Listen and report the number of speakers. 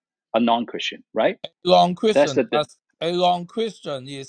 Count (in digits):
2